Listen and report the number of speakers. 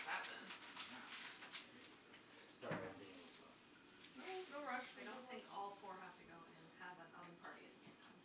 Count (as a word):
three